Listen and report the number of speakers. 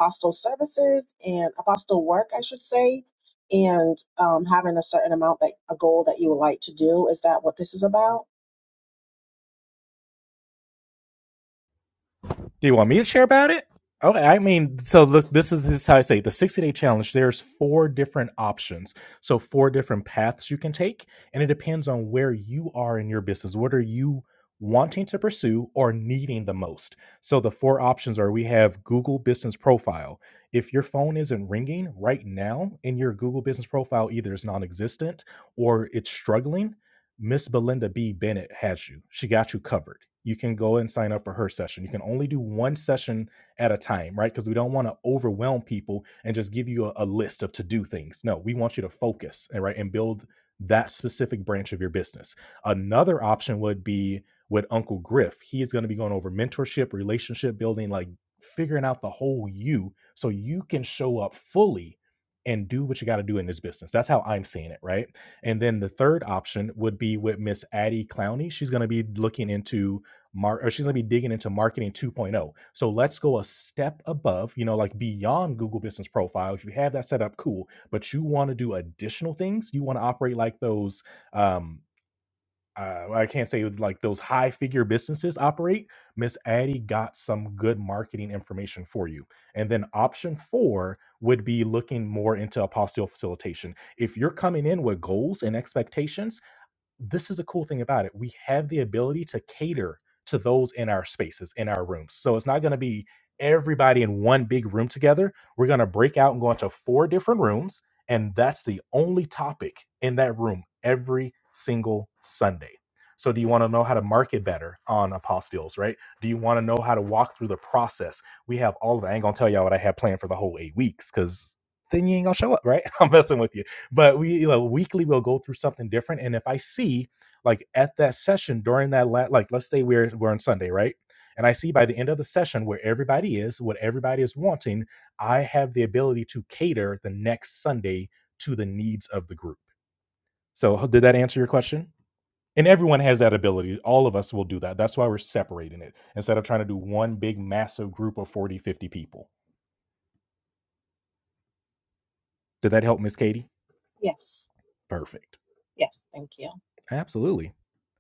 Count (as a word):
two